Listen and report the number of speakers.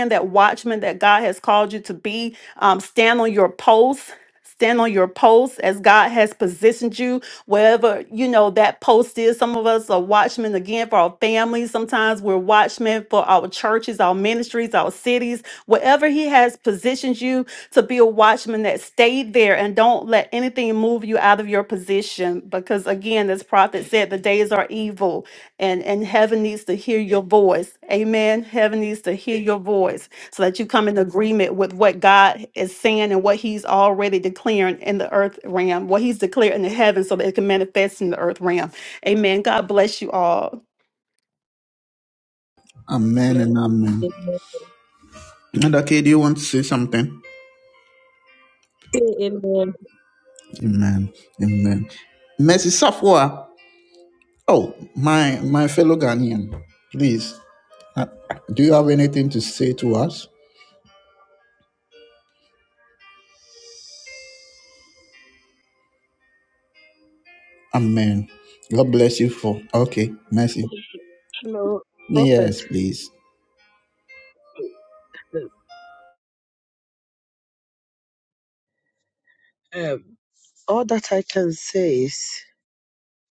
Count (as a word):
four